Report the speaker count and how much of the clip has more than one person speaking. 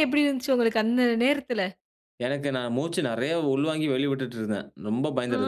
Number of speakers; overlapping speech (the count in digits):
2, about 4%